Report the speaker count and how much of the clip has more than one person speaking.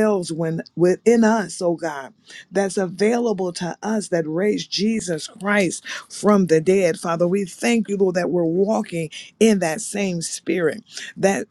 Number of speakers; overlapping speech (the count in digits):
1, no overlap